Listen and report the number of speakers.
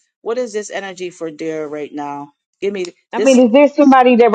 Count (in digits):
2